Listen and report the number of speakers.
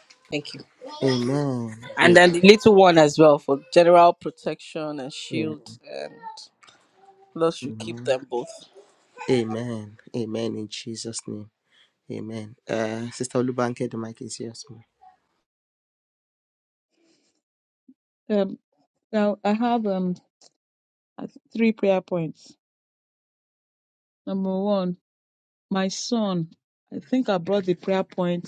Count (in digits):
3